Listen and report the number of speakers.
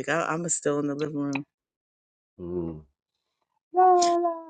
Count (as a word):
two